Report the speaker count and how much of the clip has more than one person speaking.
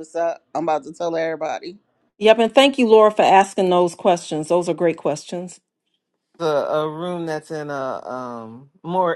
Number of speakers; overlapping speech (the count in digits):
3, no overlap